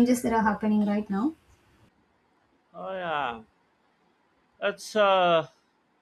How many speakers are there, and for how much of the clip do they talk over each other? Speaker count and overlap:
2, no overlap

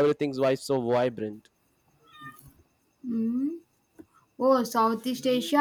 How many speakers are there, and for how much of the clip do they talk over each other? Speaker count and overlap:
2, no overlap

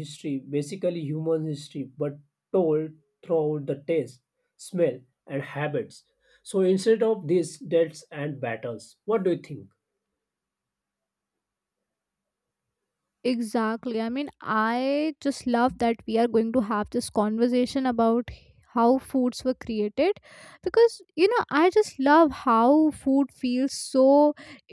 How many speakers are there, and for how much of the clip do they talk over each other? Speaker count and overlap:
2, no overlap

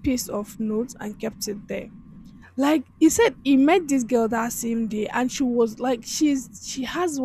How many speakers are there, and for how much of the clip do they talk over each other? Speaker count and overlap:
1, no overlap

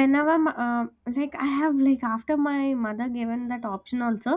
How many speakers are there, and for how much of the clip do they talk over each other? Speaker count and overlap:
1, no overlap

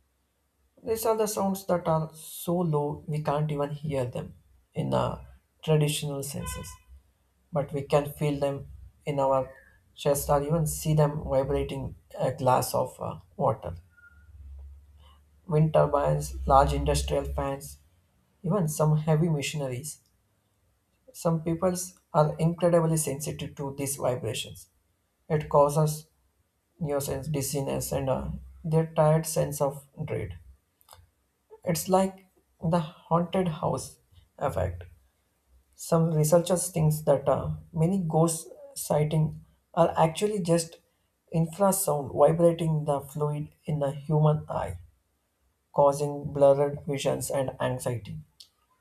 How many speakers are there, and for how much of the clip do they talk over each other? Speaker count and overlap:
1, no overlap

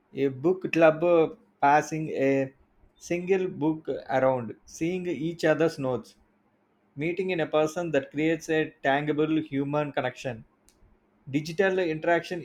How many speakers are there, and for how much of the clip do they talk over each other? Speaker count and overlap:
1, no overlap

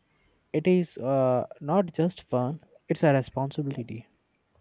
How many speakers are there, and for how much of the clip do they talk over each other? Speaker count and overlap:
1, no overlap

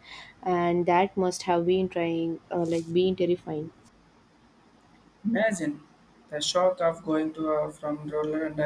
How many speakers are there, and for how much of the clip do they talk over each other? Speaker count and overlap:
2, no overlap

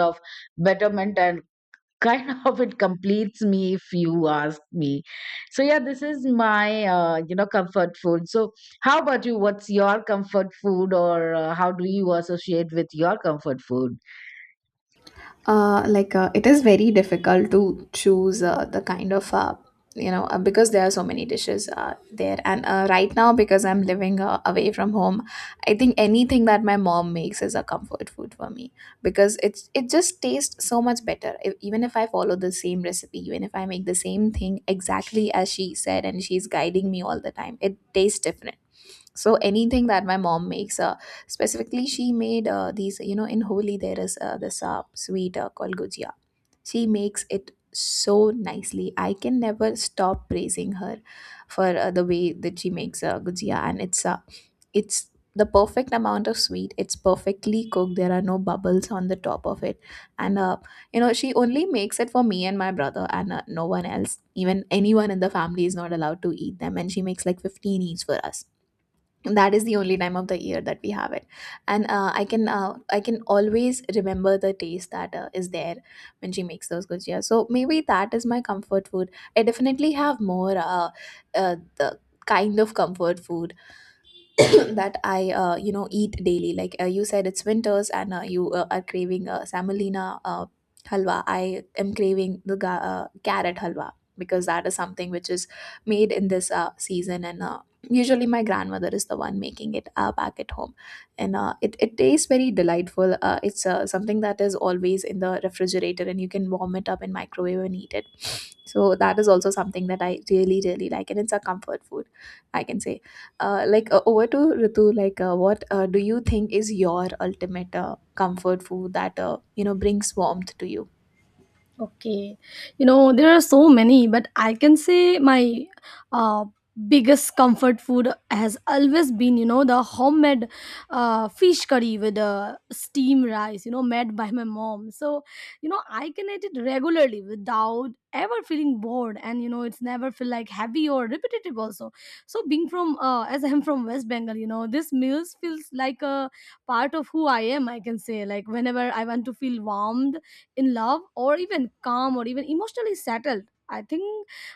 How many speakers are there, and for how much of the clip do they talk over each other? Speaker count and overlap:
3, no overlap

